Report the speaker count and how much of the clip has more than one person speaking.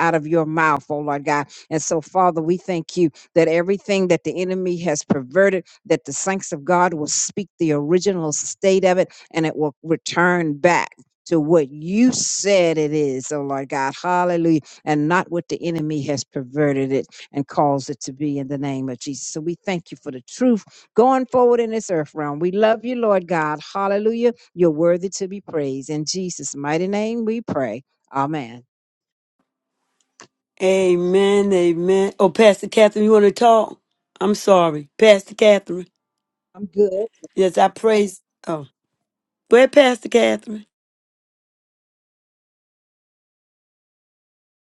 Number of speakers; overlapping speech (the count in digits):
2, no overlap